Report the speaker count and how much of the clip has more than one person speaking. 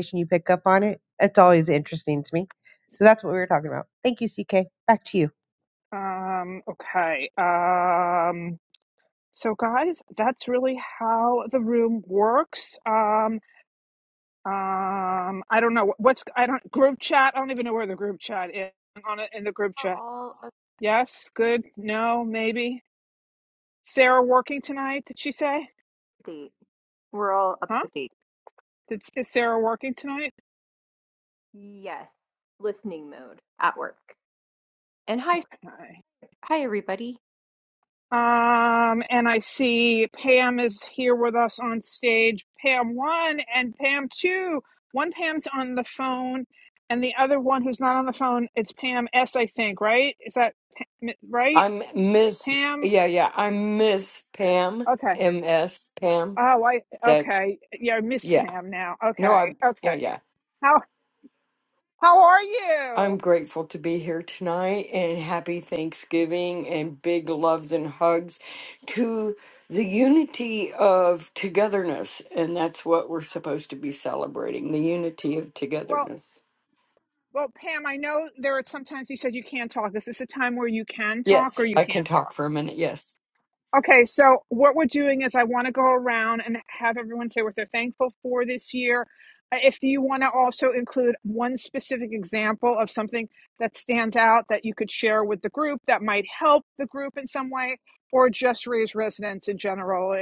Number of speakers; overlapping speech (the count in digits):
4, about 4%